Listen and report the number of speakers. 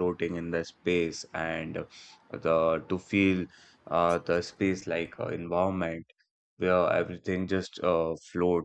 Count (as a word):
one